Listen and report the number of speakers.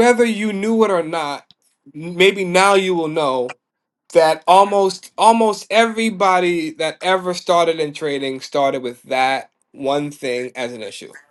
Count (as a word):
one